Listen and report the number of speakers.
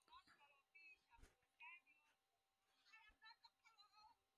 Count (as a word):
zero